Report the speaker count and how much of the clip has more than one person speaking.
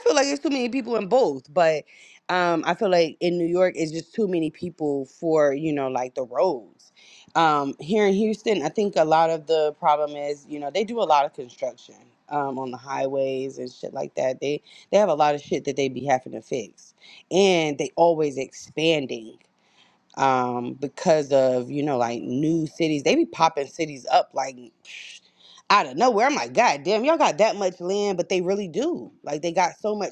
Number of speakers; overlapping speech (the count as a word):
one, no overlap